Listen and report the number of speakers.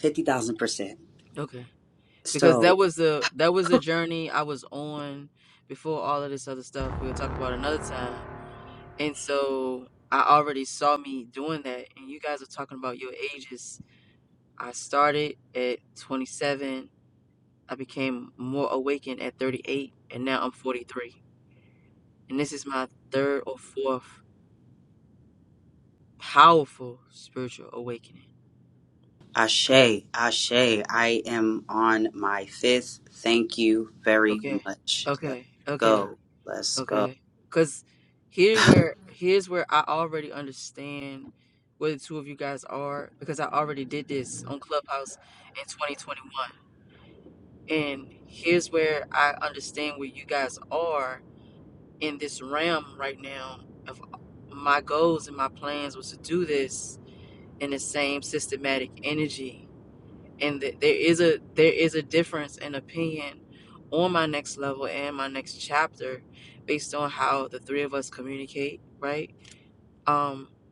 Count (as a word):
two